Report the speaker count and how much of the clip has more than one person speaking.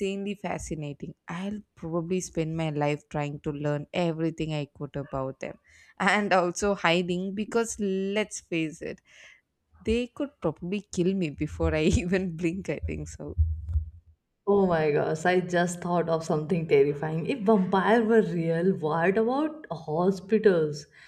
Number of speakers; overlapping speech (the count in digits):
2, no overlap